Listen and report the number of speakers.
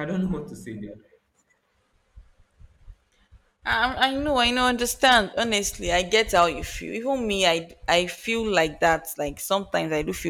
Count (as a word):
two